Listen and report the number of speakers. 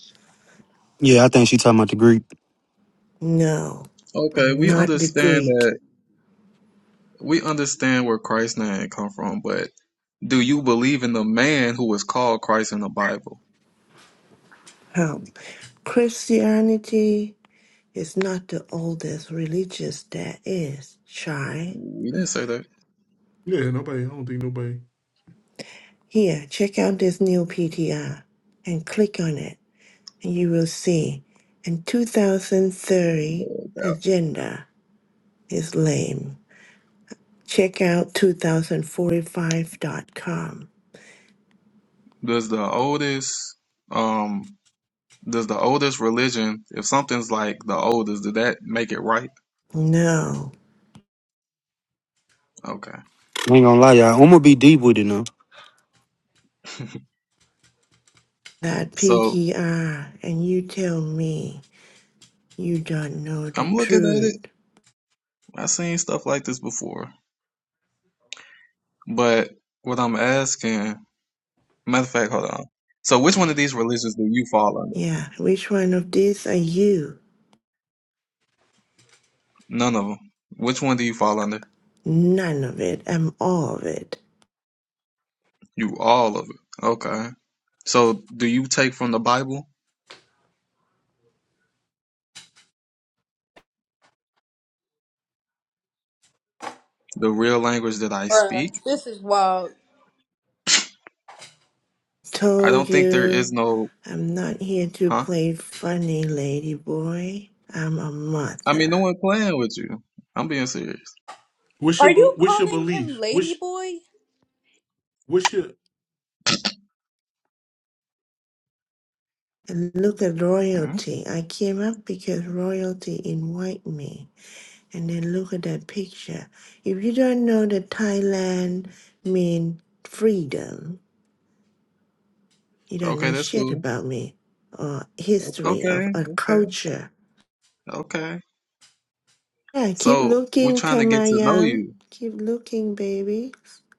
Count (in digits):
5